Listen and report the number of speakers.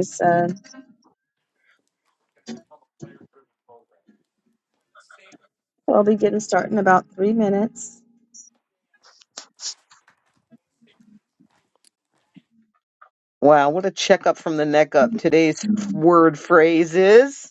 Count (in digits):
2